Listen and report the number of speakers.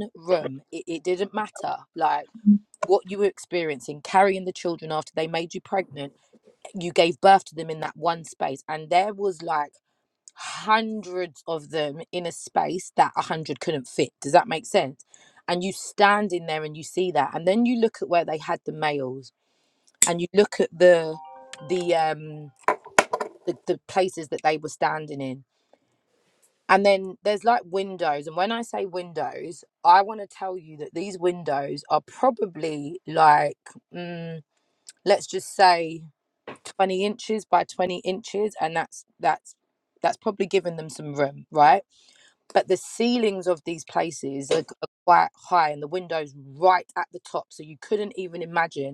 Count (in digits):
1